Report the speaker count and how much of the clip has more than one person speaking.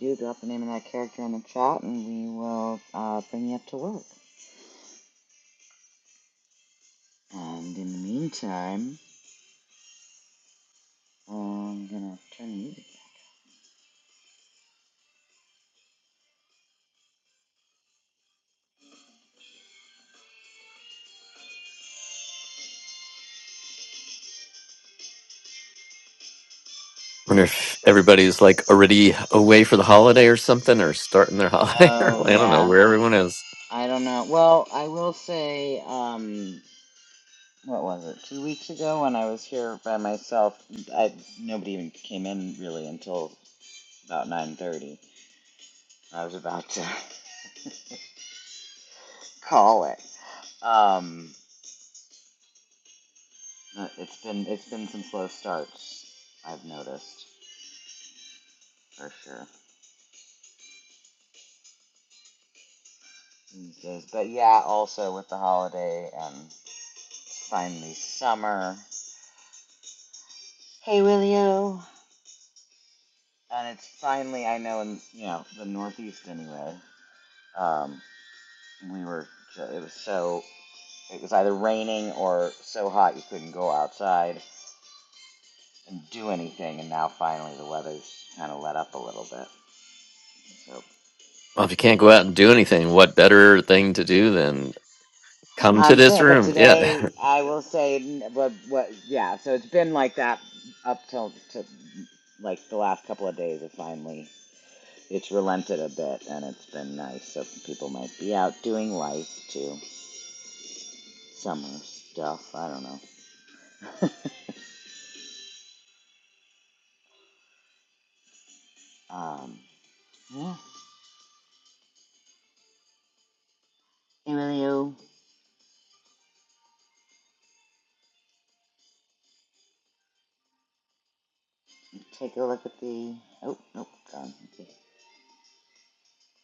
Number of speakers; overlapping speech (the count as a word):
two, about 2%